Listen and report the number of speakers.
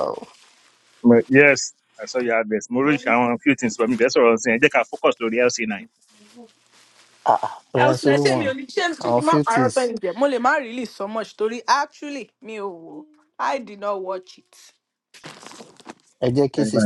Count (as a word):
three